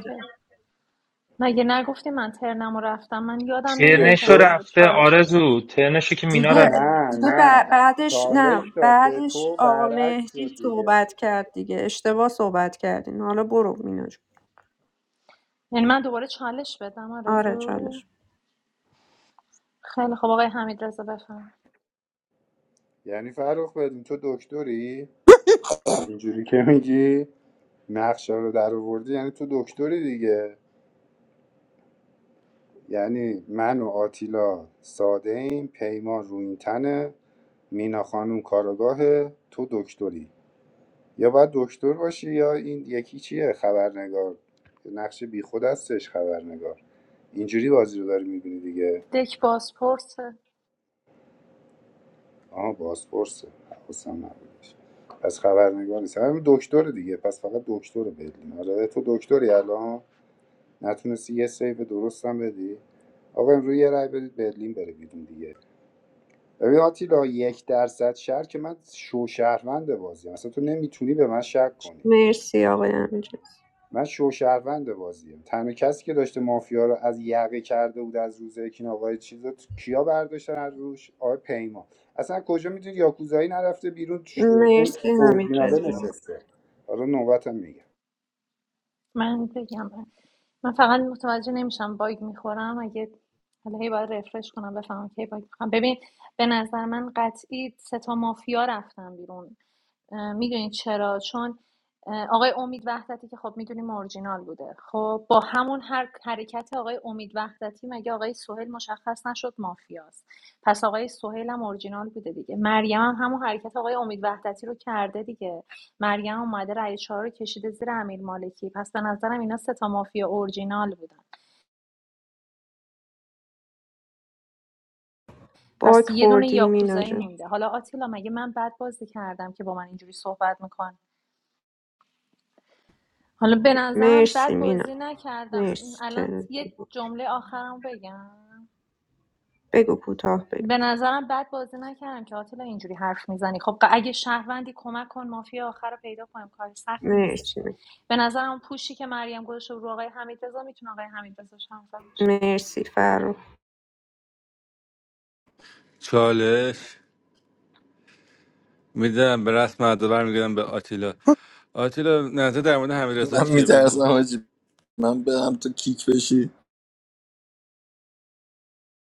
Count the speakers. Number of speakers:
six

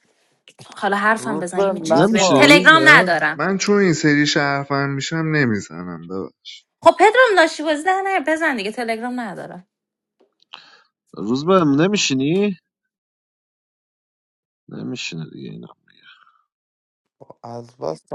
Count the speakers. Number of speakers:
four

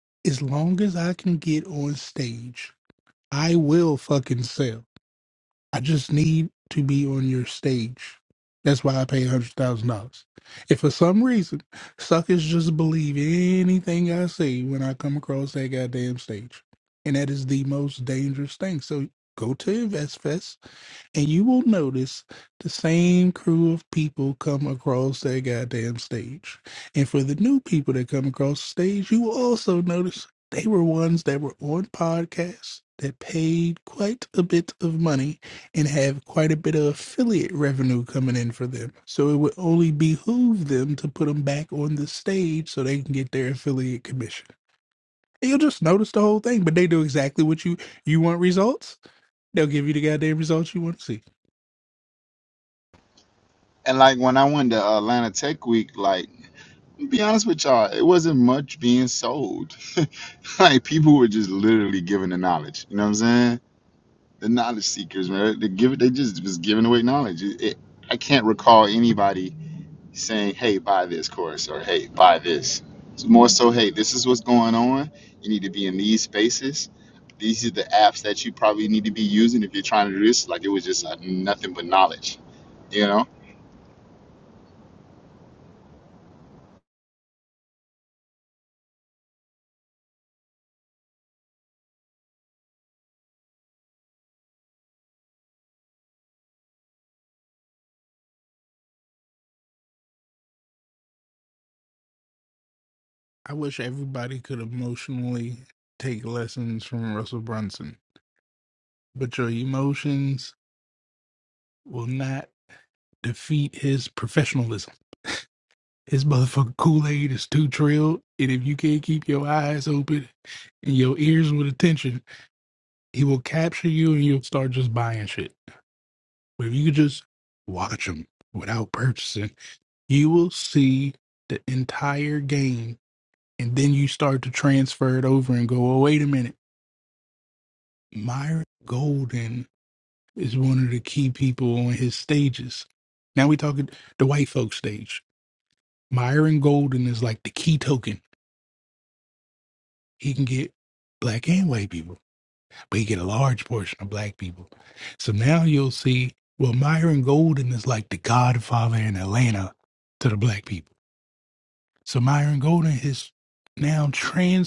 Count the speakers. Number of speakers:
two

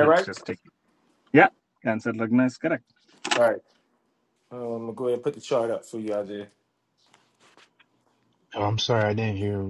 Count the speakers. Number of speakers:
three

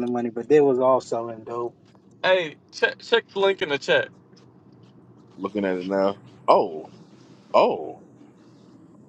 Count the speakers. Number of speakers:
three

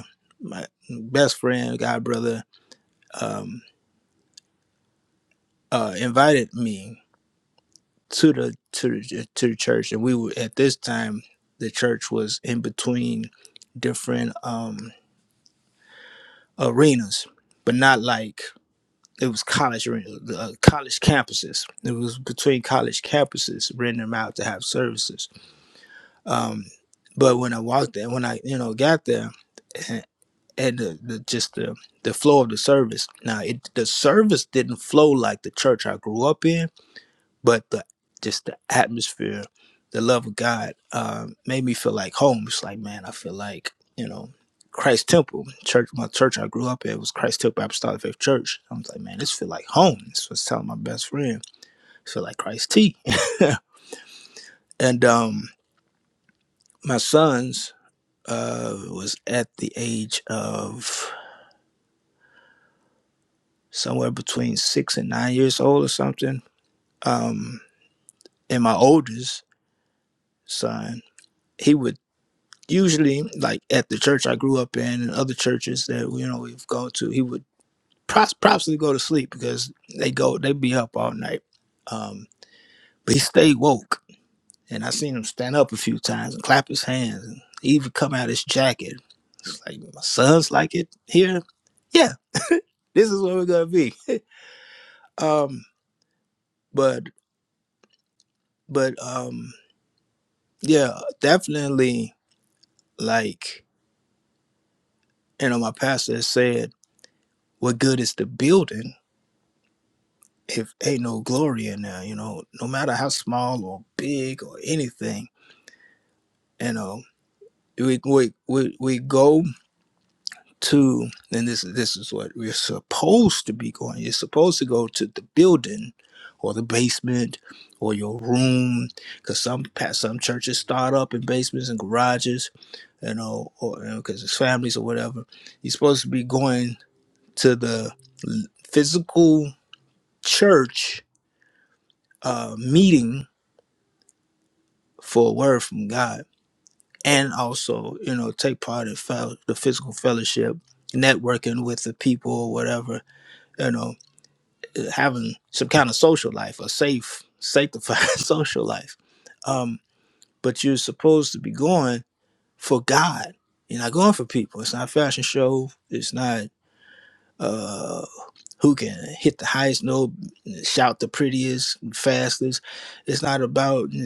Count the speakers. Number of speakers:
one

